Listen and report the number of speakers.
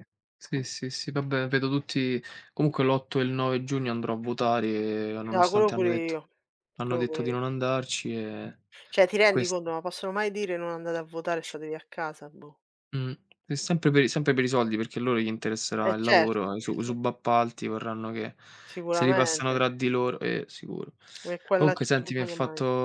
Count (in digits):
2